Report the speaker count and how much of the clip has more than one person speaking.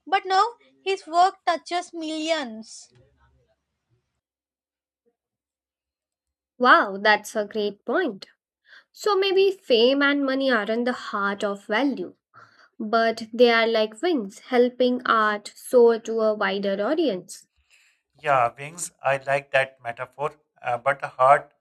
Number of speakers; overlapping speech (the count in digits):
3, no overlap